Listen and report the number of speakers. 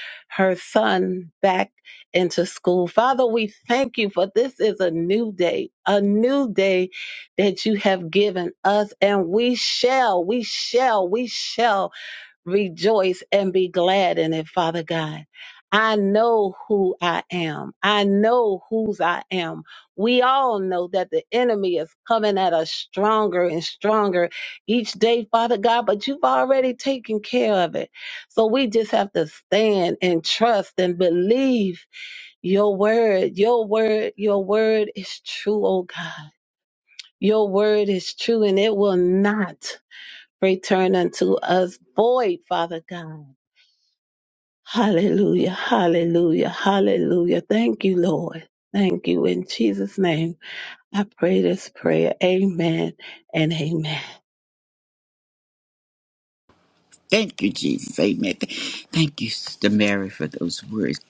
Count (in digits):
2